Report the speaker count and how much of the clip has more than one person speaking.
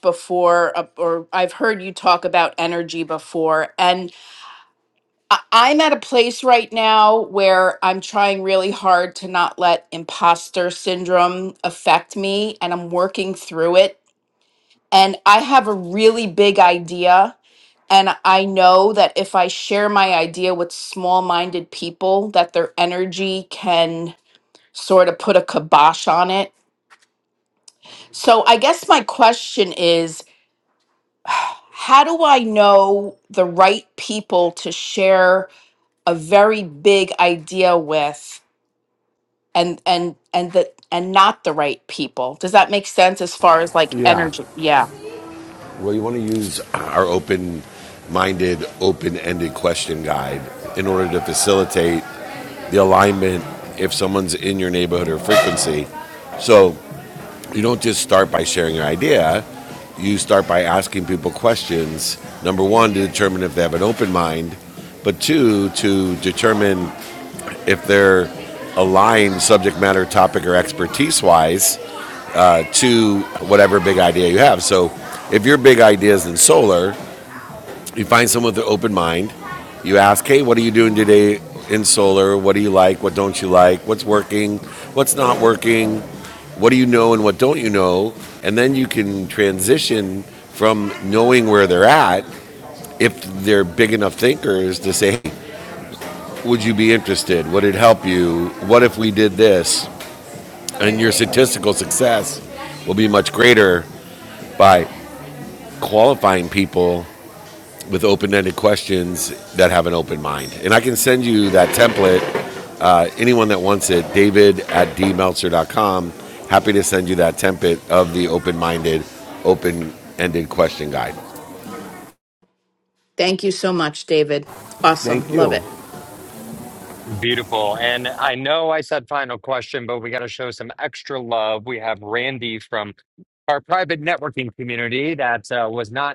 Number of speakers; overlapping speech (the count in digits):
3, about 1%